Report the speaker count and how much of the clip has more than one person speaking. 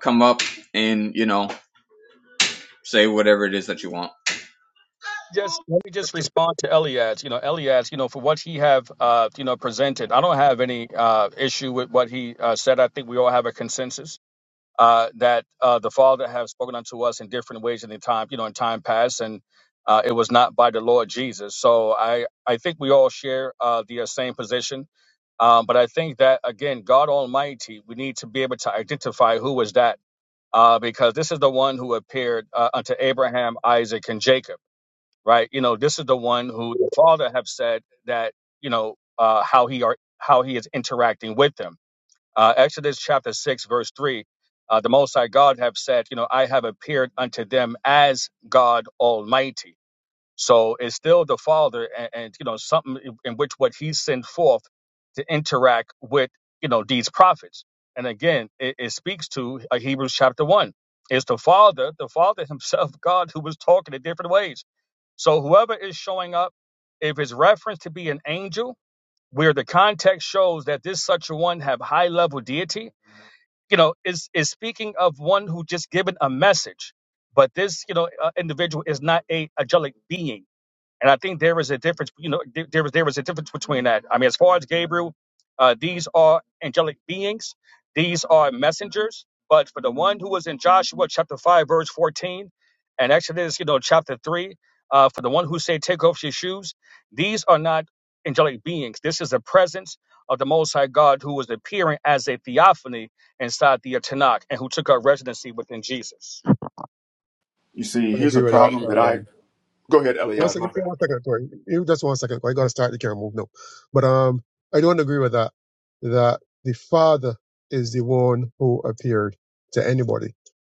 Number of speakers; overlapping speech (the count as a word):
four, about 1%